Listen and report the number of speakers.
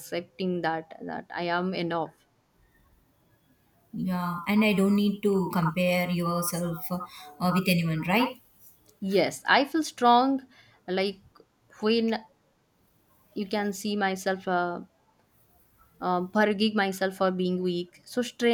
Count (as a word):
two